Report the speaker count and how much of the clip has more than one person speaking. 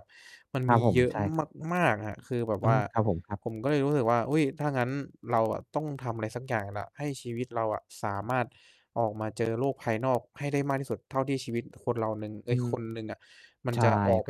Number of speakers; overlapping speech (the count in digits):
2, about 8%